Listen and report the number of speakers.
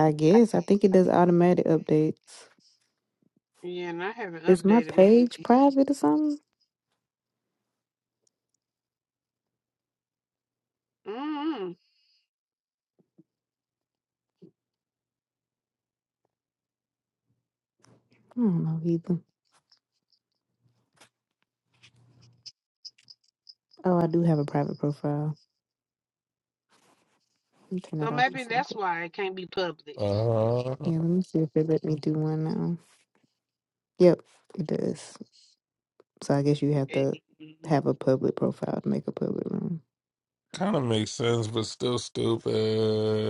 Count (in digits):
3